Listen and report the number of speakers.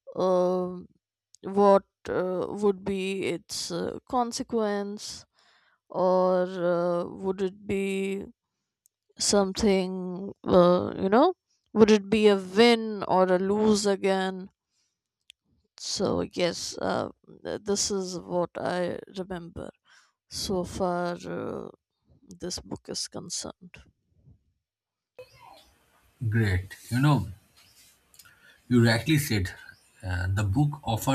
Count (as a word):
two